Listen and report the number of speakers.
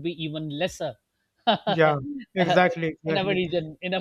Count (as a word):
two